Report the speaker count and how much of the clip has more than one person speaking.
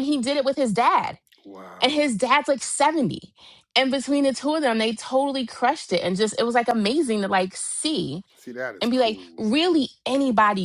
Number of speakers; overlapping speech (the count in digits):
2, about 7%